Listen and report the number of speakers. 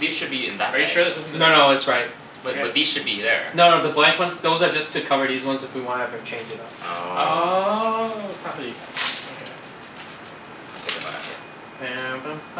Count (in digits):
3